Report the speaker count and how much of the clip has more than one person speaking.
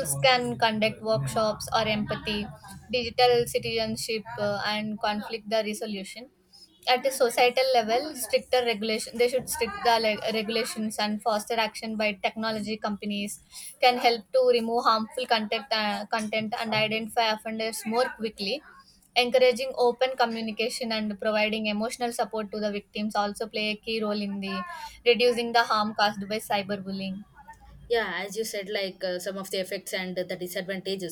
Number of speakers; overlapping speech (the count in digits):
2, no overlap